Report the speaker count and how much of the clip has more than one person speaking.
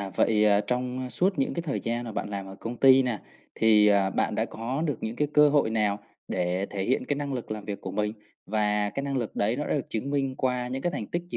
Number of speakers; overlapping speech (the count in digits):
1, no overlap